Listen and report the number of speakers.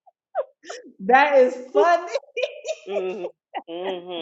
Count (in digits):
2